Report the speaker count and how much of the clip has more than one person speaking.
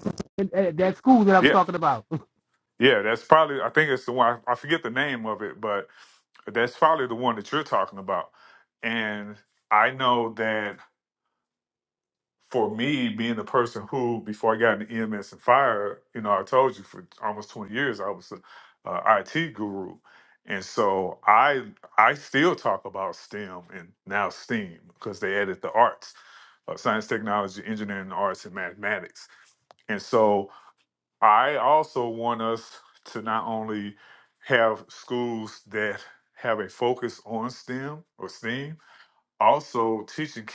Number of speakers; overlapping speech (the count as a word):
two, under 1%